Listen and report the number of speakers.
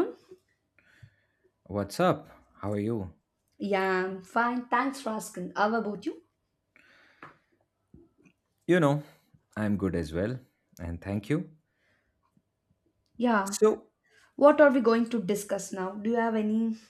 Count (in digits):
2